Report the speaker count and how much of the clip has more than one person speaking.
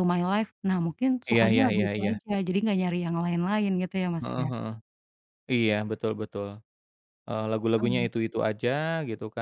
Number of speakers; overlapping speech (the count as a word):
two, about 16%